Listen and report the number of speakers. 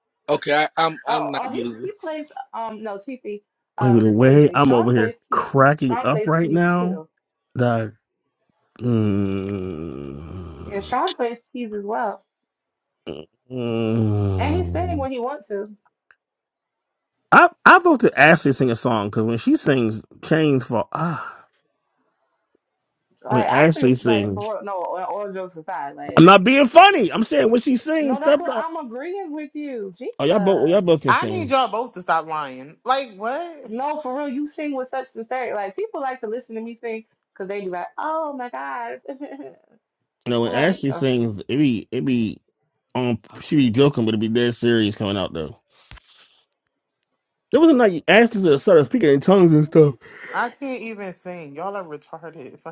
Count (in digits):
4